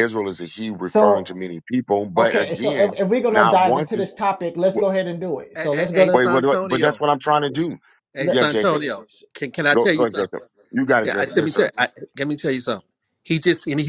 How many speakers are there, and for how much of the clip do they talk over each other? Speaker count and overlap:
three, about 37%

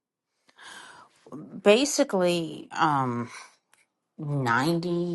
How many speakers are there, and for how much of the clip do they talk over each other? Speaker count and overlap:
one, no overlap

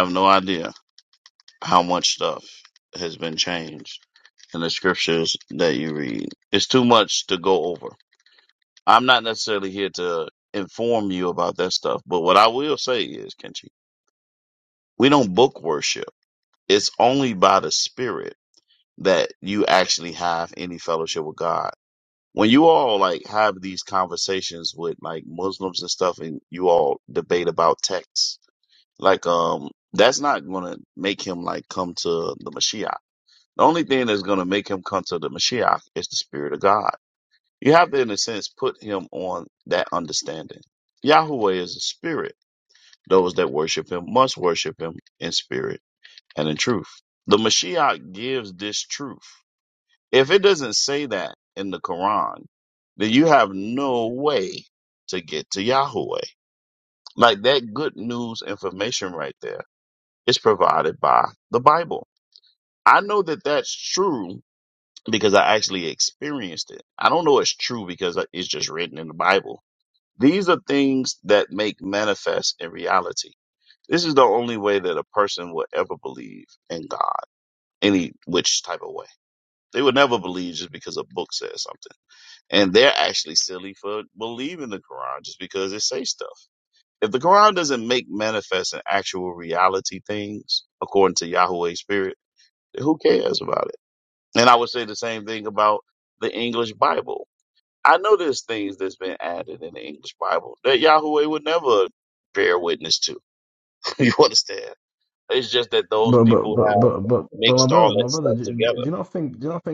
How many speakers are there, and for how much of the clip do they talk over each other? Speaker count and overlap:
two, about 3%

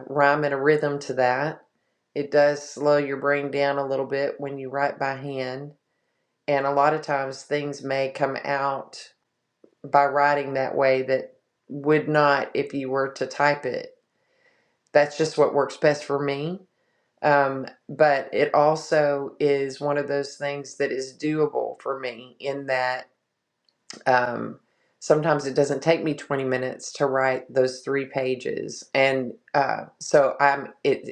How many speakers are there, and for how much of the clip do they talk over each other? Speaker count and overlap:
one, no overlap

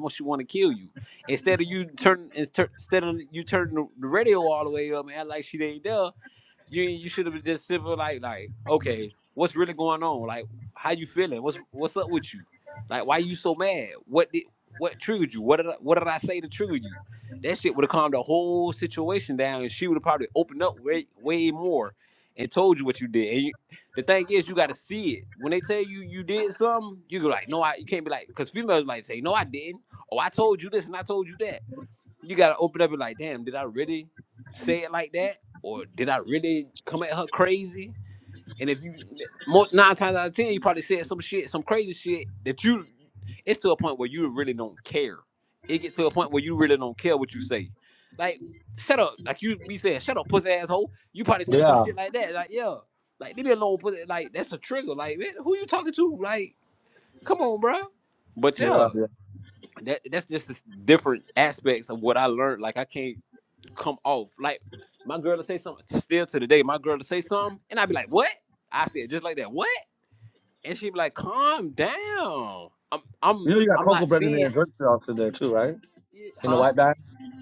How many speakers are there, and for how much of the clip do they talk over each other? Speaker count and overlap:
two, about 3%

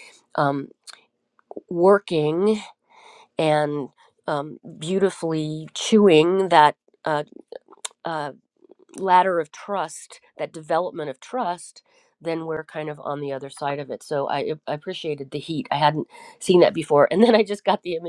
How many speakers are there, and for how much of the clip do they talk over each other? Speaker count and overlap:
one, no overlap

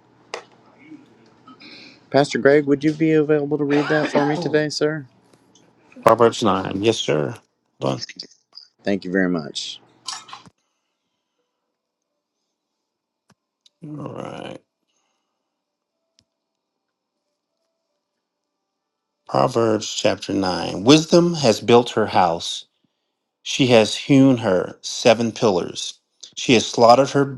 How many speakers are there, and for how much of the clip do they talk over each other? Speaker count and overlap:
two, no overlap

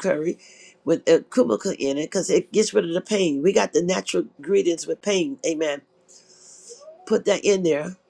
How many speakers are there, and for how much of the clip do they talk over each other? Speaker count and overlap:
one, no overlap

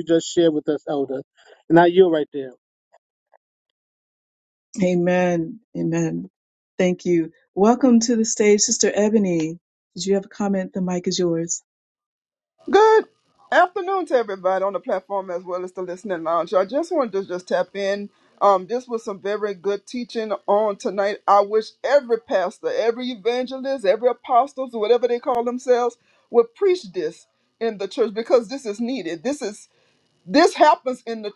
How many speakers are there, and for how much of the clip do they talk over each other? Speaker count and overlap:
three, no overlap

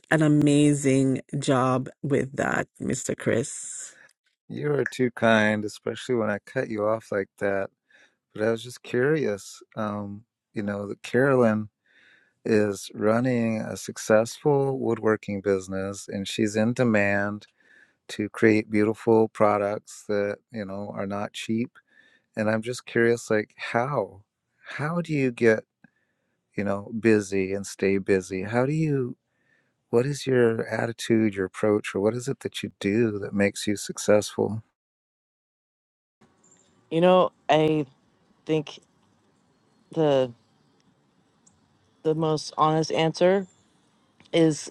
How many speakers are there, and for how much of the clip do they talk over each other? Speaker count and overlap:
three, no overlap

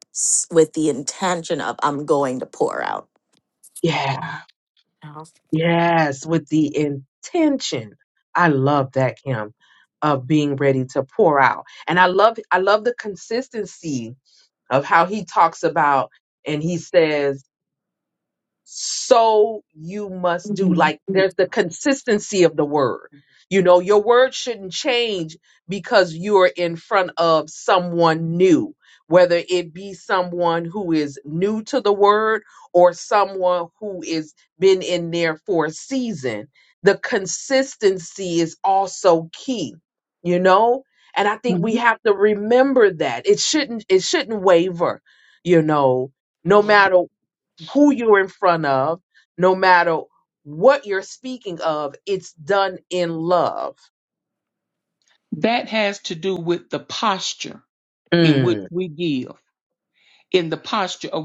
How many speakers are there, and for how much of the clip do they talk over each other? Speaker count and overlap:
three, about 3%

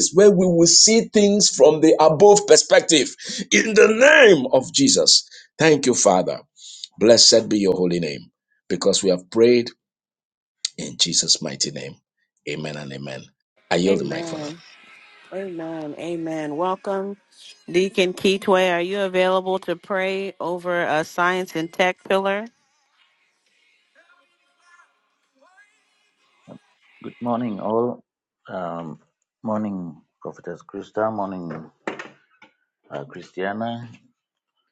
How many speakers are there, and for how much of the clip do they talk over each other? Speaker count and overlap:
three, about 2%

